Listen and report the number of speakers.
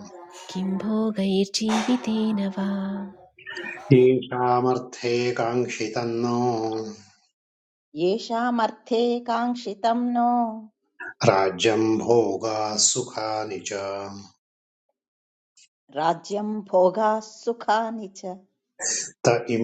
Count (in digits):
3